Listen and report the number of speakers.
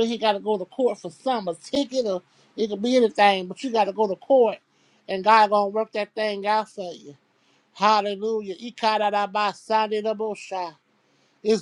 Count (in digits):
1